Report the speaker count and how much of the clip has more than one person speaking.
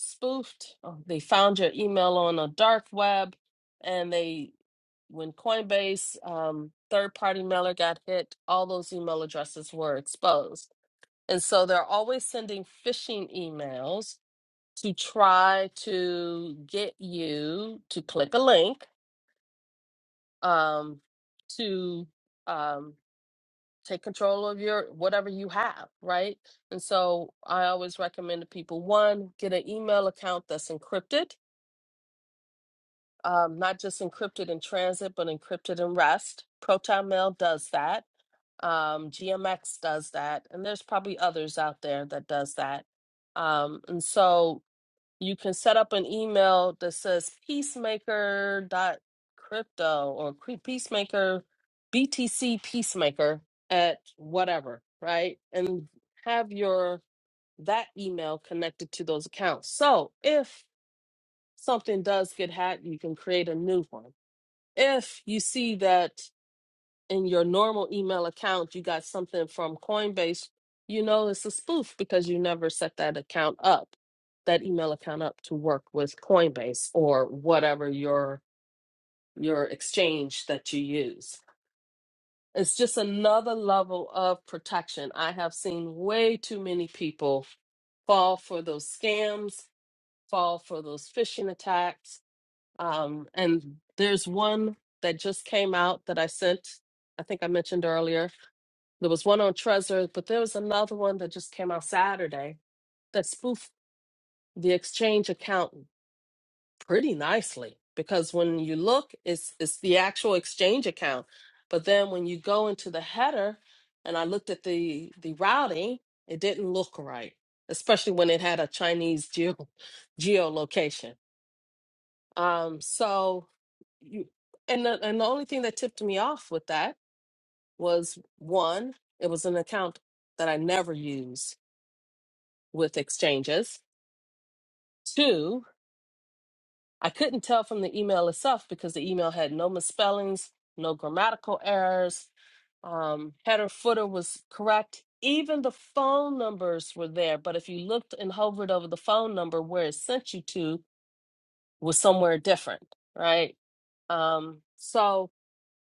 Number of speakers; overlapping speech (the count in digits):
1, no overlap